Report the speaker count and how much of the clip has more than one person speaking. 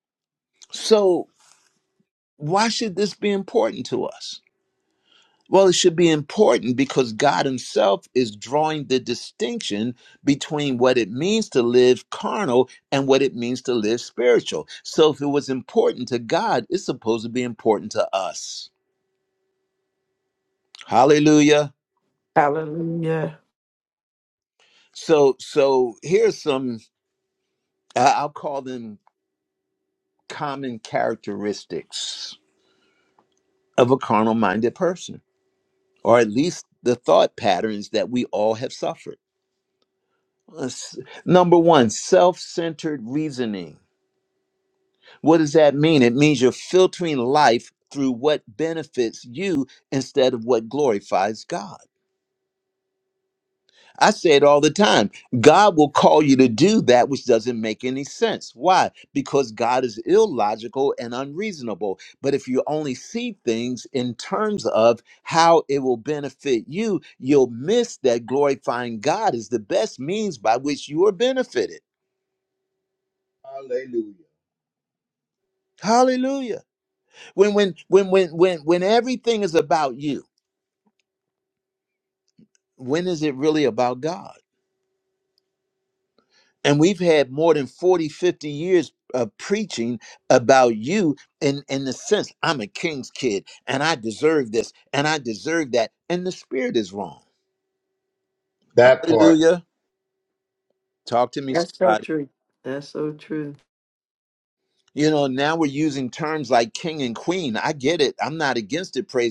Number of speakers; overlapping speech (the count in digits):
4, about 1%